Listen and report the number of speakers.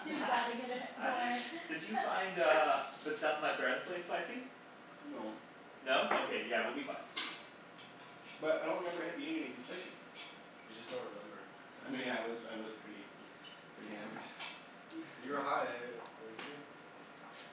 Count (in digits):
4